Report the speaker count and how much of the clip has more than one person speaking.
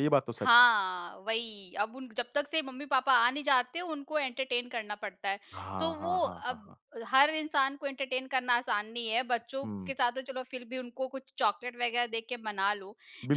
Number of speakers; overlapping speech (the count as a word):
two, about 10%